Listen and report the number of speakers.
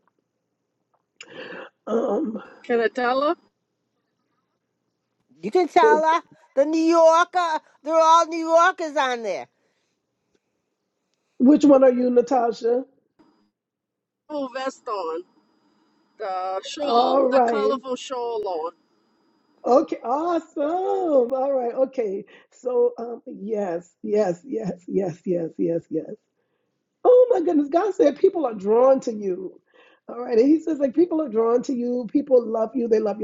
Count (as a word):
three